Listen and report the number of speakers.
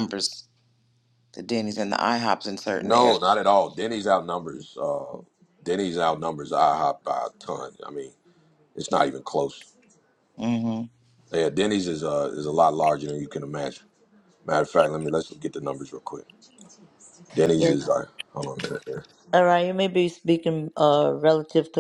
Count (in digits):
3